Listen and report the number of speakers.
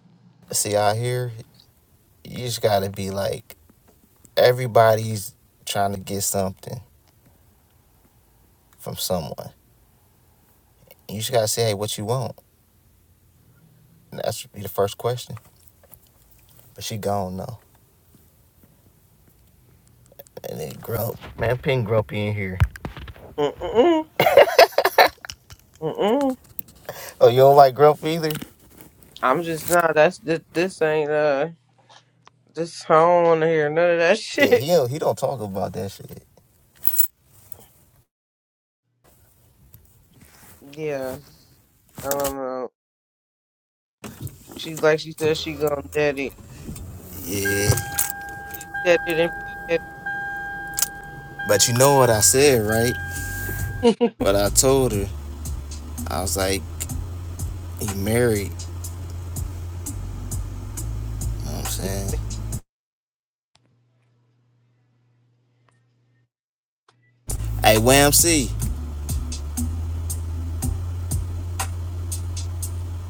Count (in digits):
2